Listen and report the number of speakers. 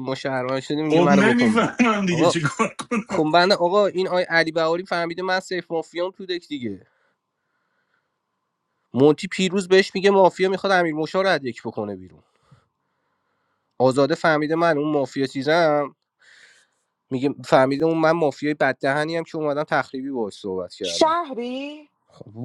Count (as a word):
three